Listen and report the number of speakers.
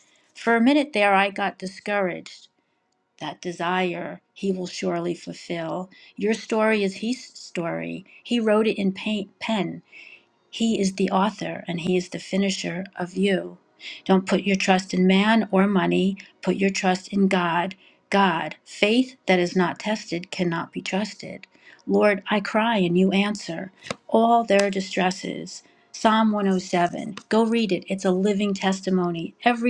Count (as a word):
one